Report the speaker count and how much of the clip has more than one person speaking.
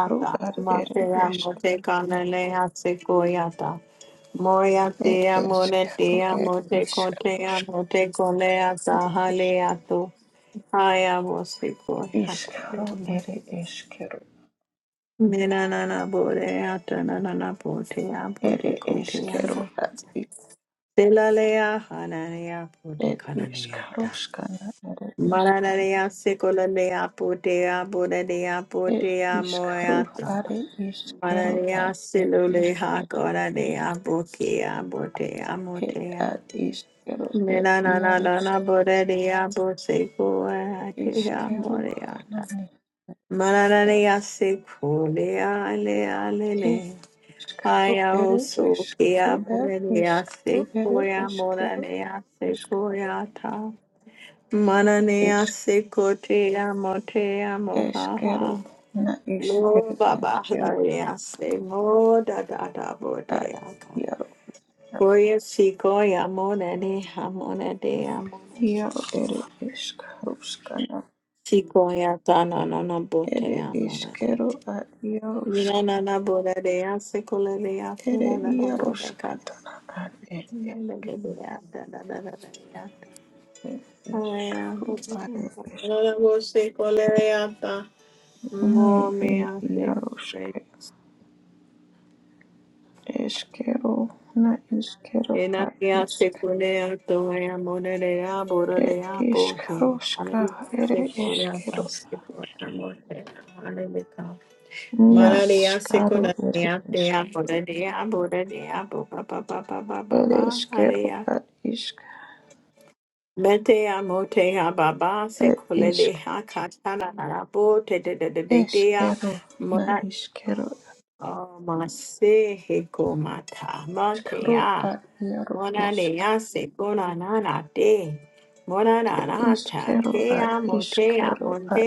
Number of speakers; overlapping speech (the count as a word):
two, about 29%